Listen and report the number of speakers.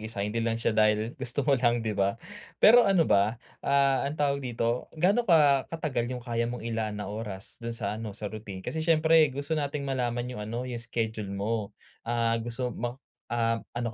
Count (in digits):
1